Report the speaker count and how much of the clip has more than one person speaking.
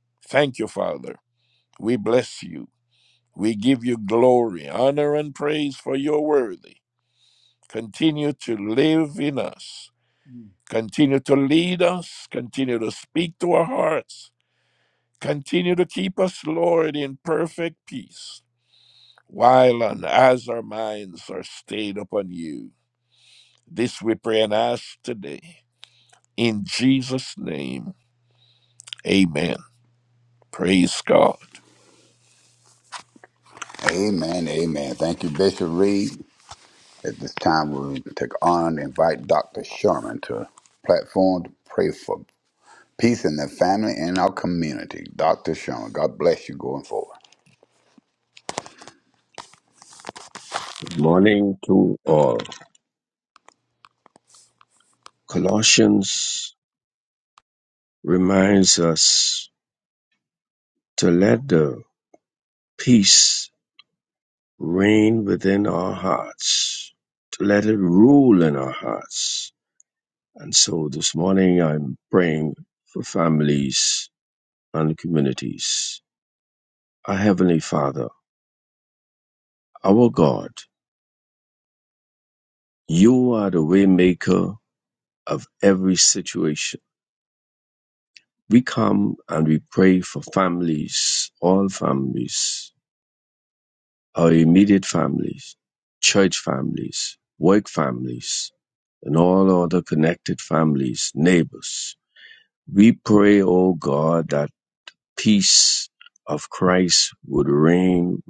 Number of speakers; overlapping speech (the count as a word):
three, no overlap